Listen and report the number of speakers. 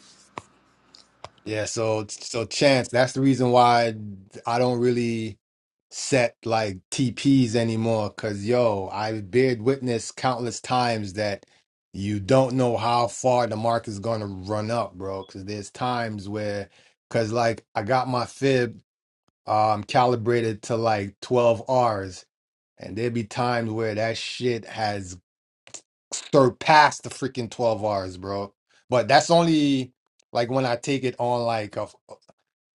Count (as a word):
one